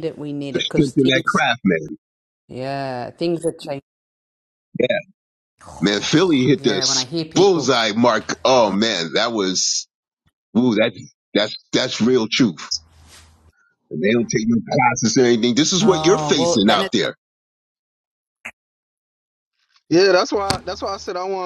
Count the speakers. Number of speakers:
3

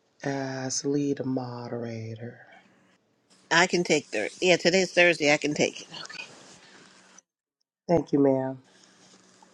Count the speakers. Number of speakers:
2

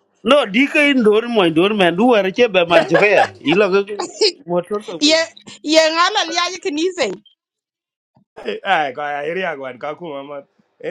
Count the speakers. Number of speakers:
3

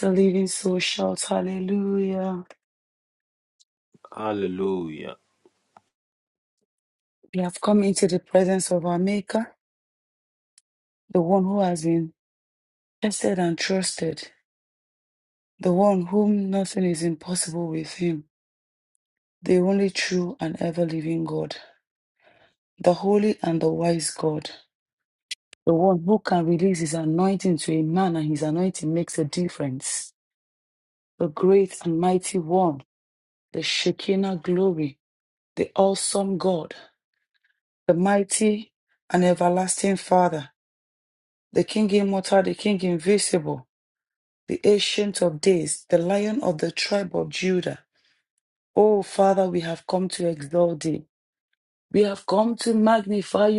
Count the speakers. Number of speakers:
2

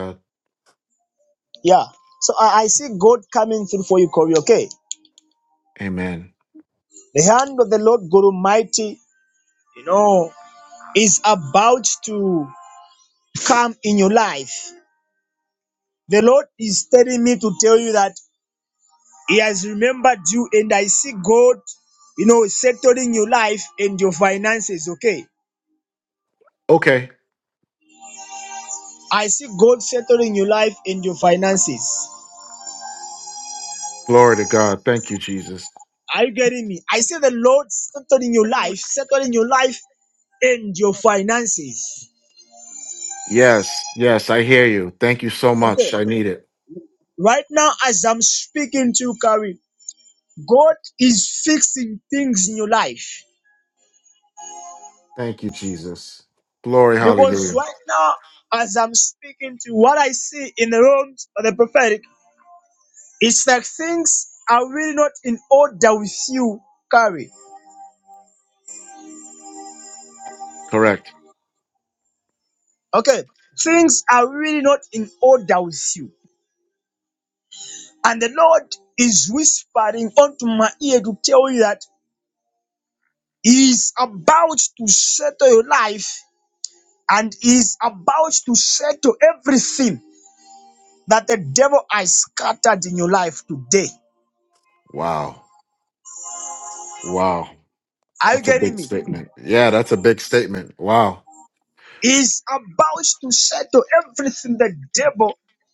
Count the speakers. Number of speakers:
2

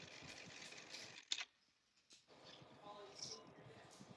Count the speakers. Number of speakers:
0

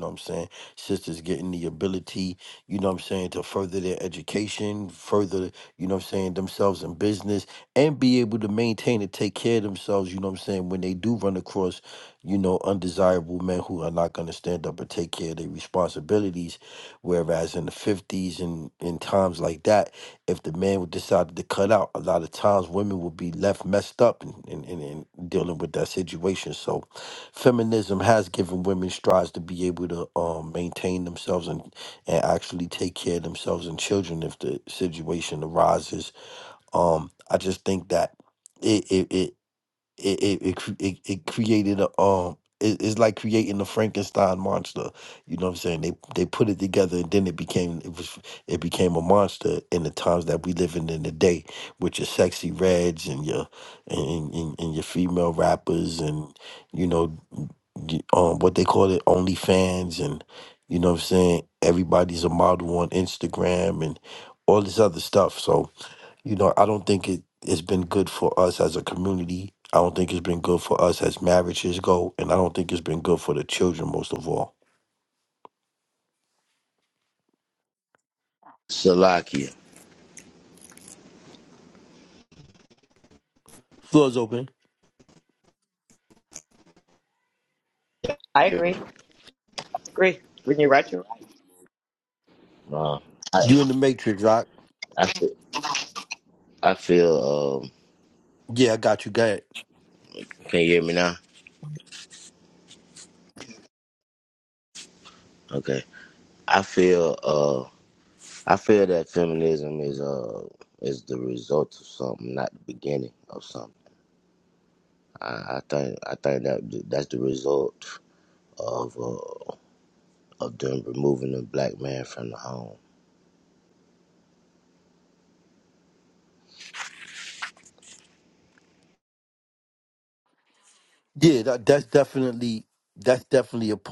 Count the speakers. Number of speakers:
3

